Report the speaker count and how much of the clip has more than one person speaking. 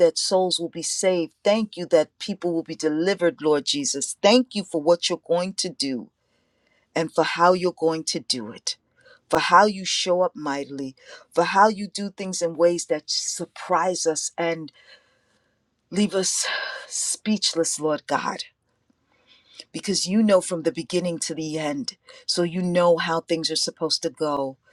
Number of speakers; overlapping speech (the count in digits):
1, no overlap